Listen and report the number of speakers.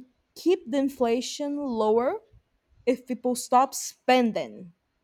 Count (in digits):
1